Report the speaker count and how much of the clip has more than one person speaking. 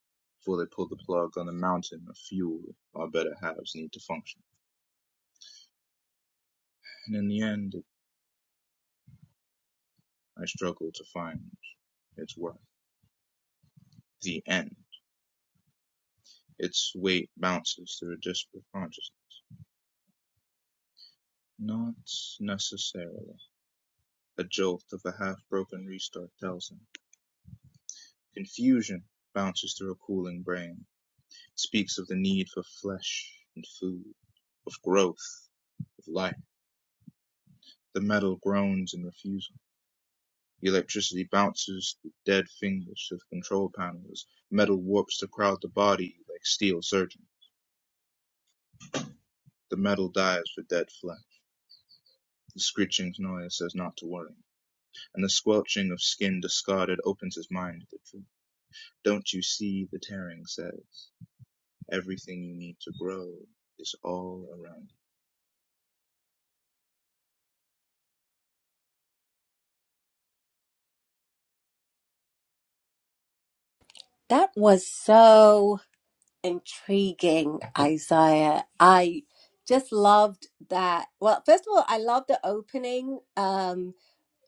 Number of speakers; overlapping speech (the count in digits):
2, no overlap